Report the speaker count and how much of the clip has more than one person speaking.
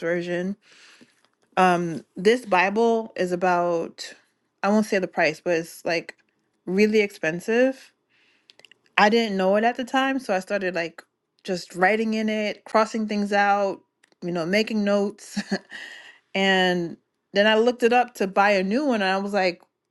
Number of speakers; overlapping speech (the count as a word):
one, no overlap